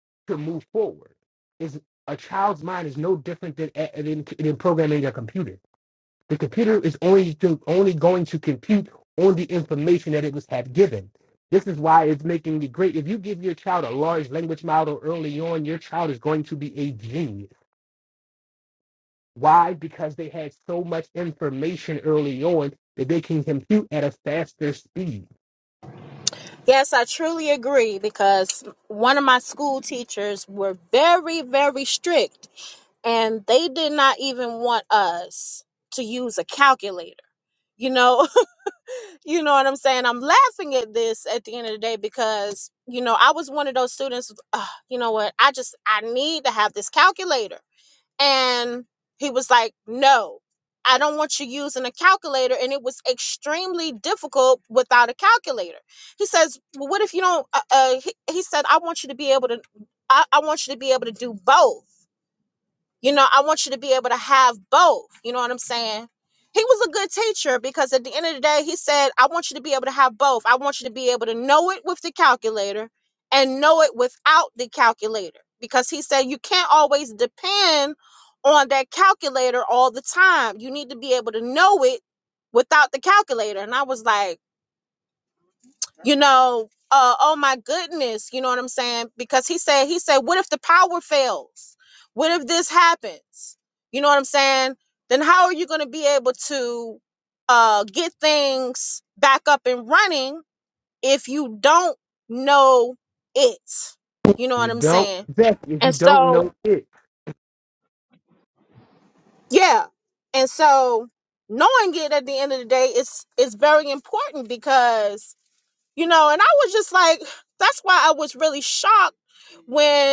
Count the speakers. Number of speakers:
two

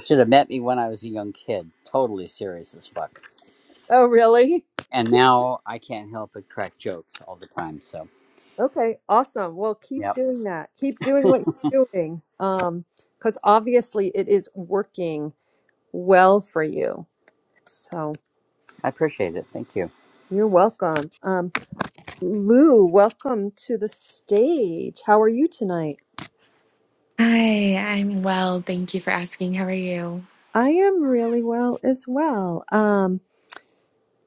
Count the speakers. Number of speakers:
three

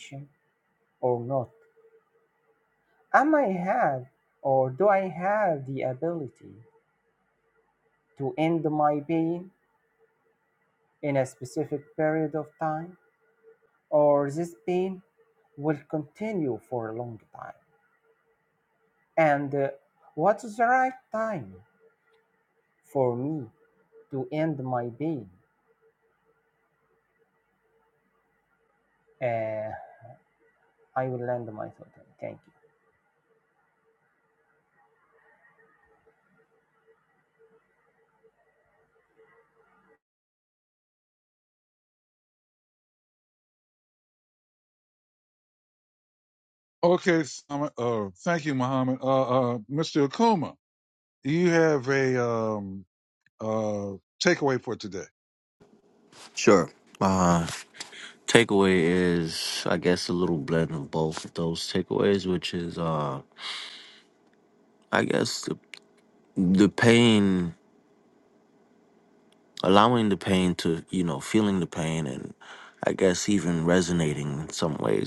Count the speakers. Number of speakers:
three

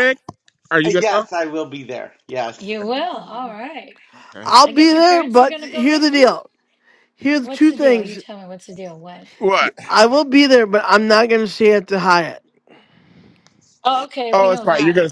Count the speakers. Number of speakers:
four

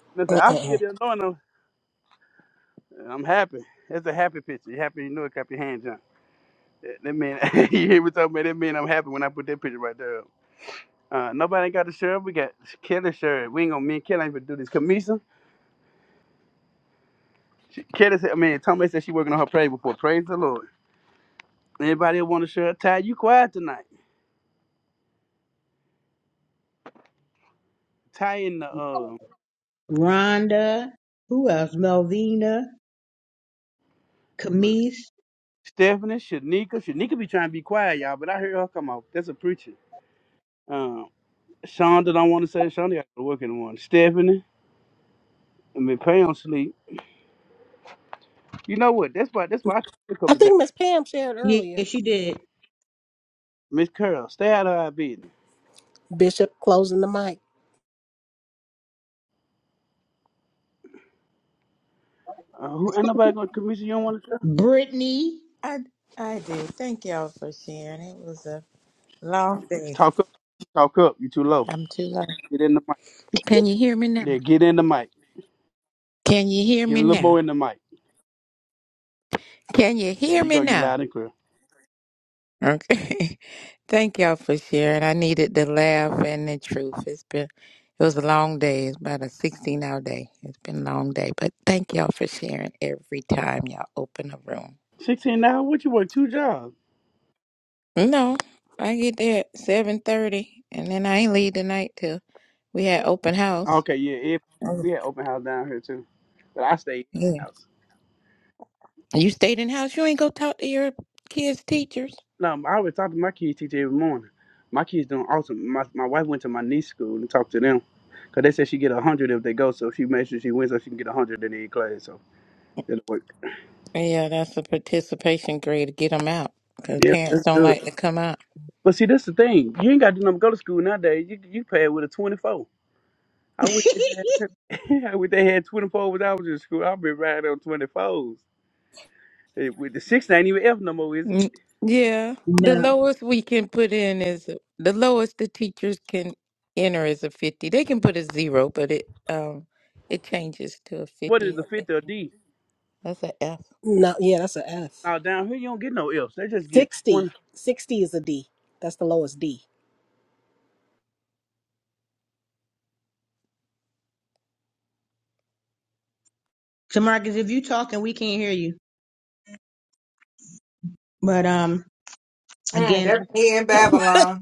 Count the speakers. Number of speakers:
five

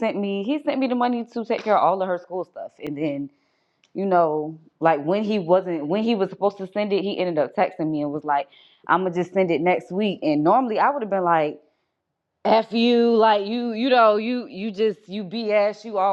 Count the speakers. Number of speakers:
one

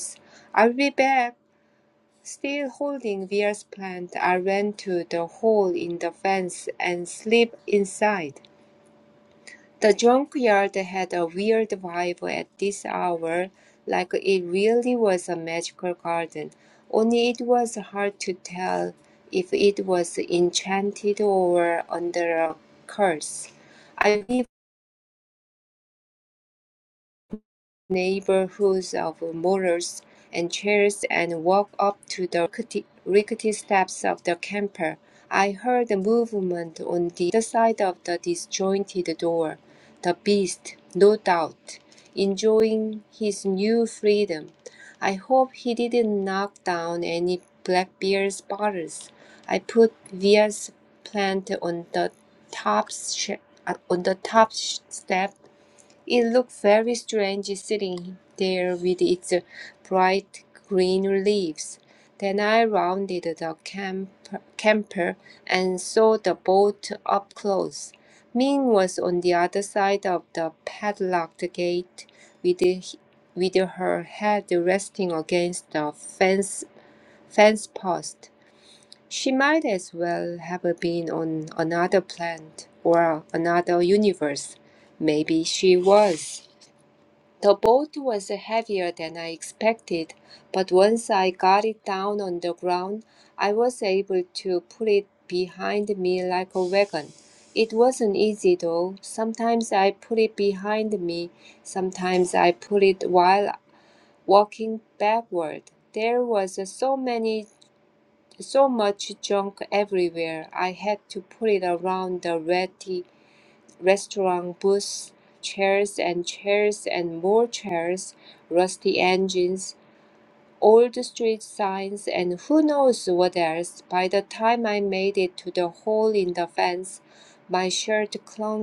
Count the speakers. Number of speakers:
one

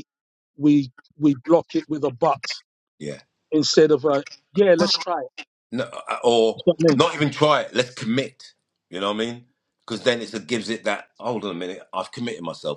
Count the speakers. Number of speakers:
two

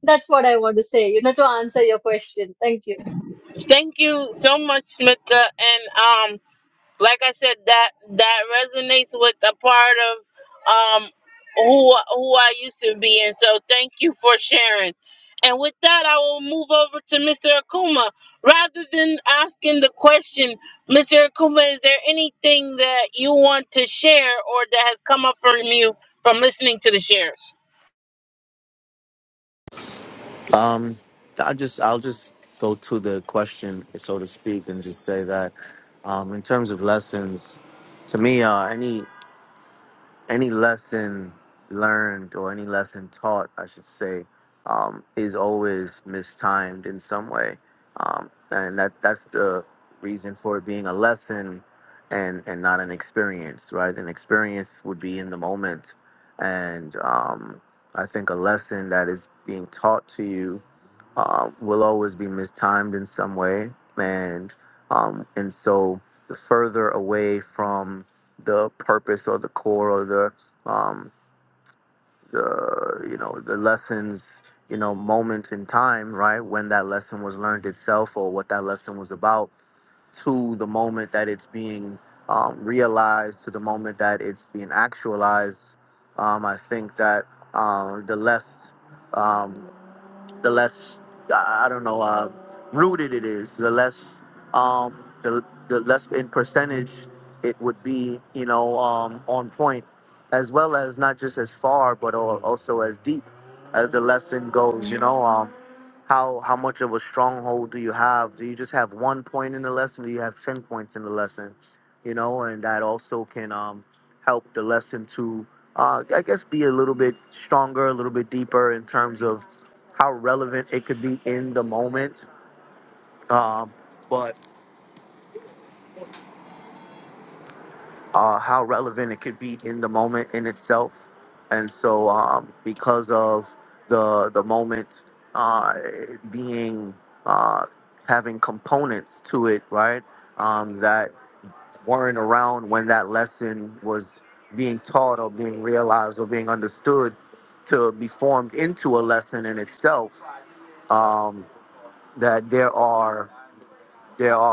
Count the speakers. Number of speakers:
three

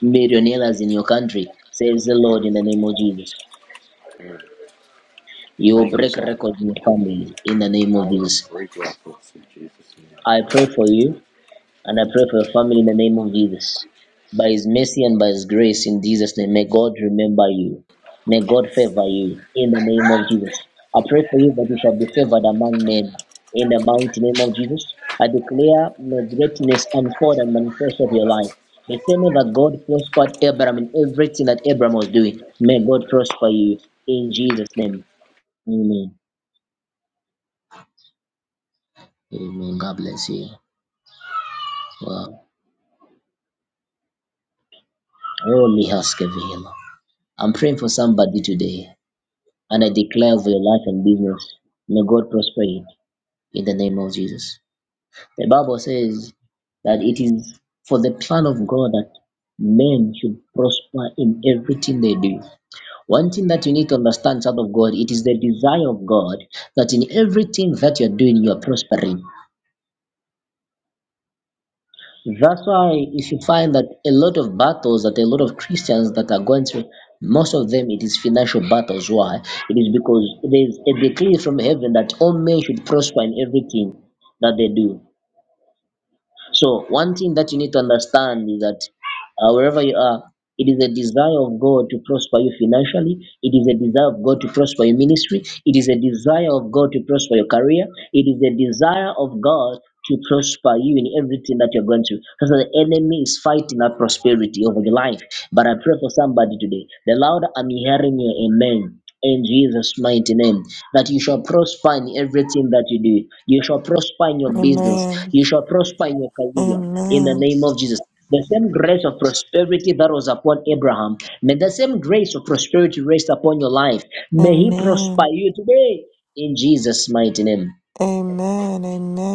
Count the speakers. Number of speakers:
three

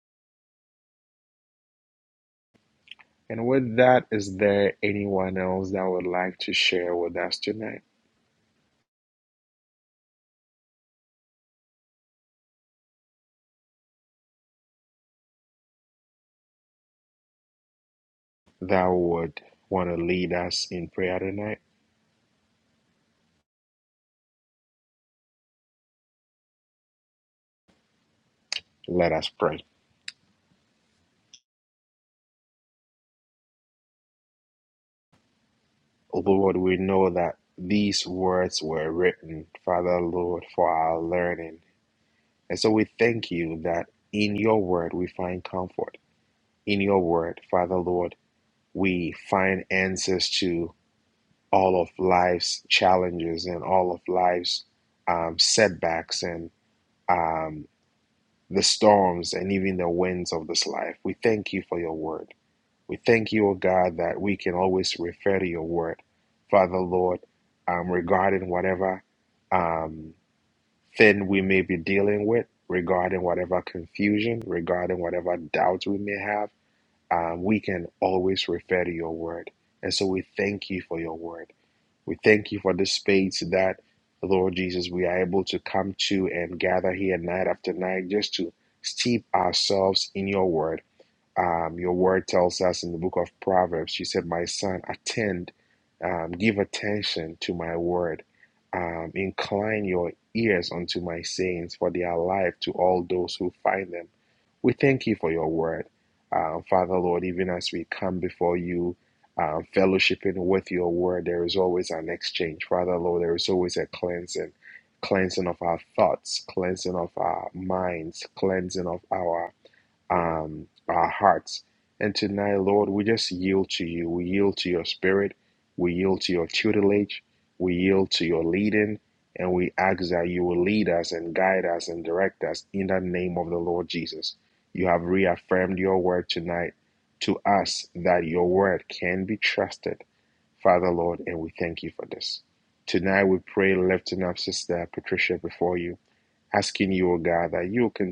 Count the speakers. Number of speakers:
one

